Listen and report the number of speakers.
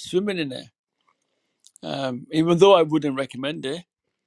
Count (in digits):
1